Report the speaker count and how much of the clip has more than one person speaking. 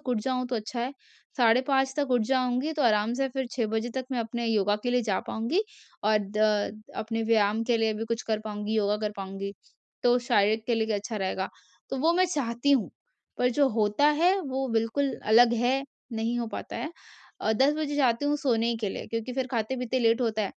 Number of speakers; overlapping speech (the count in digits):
1, no overlap